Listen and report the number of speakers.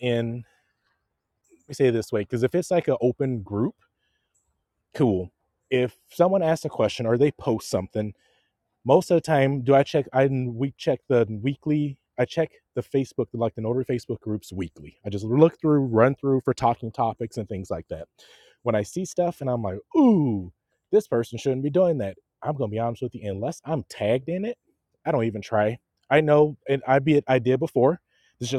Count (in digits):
1